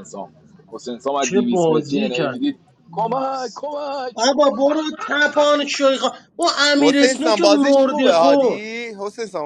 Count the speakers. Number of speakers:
3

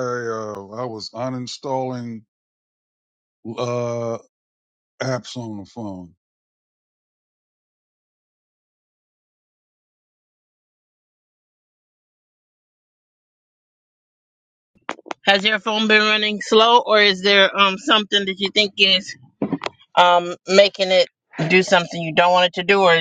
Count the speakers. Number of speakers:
2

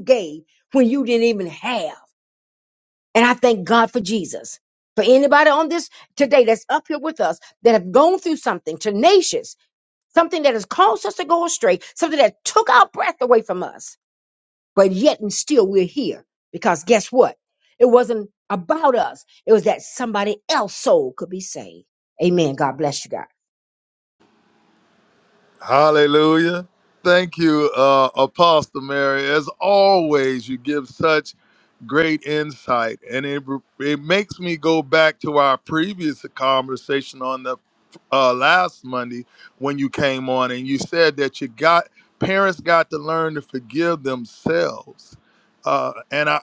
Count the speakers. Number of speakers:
2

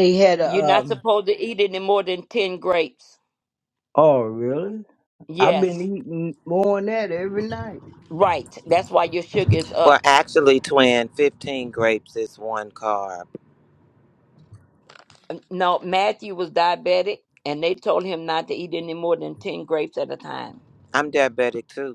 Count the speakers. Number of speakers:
3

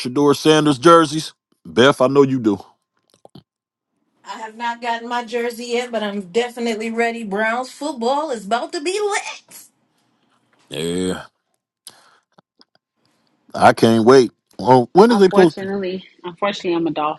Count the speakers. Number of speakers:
3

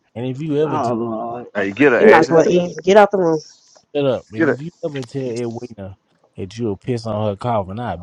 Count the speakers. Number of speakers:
3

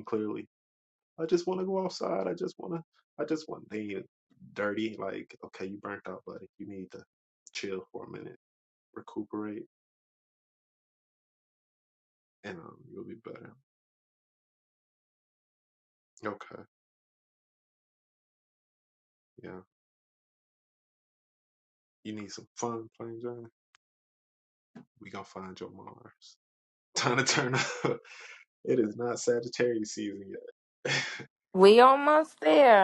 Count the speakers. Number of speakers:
2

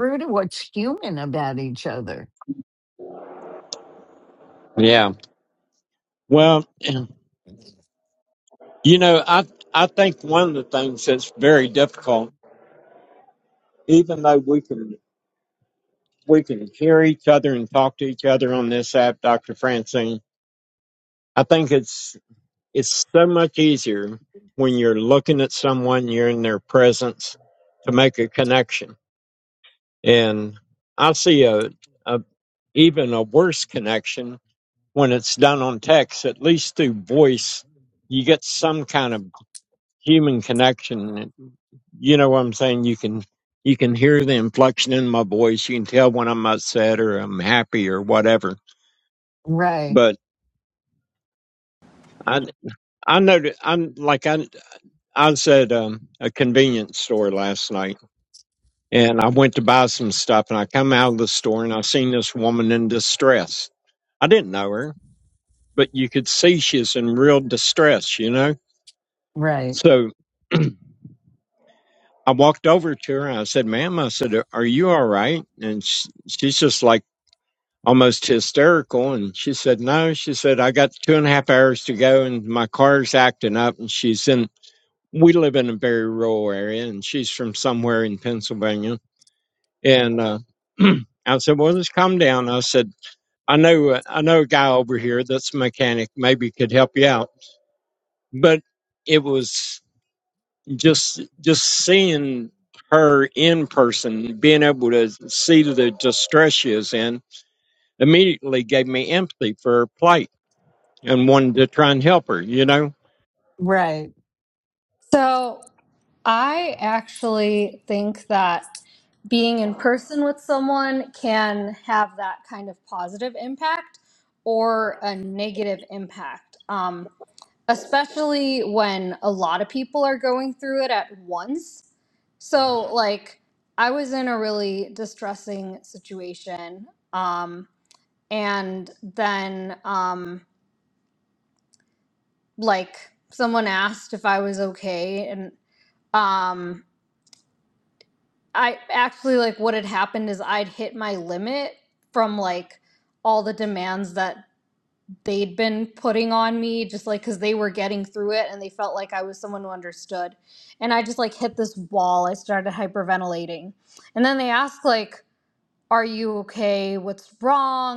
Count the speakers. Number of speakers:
3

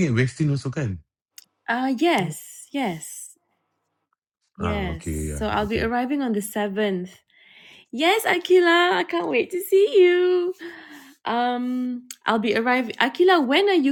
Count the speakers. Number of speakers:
2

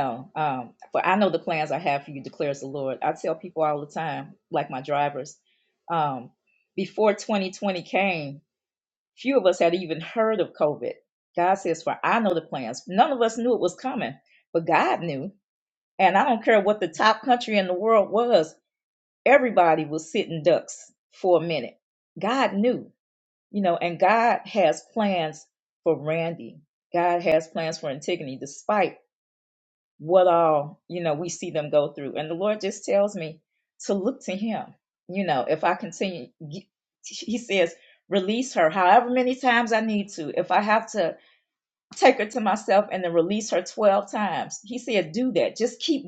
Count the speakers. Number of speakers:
1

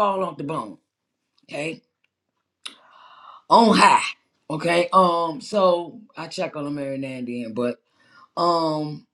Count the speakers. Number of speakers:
1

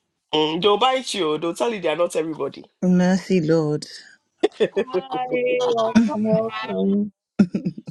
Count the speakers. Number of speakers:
3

